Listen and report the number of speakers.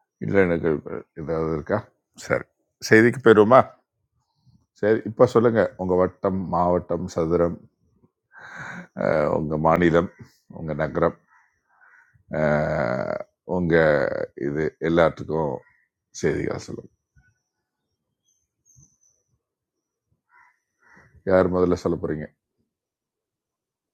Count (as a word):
one